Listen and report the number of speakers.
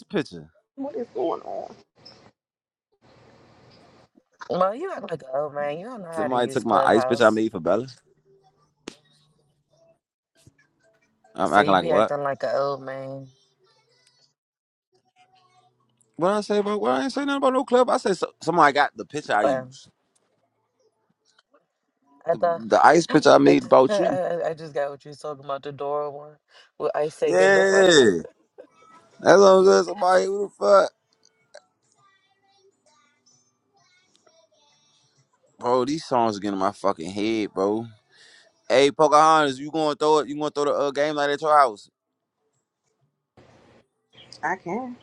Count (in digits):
3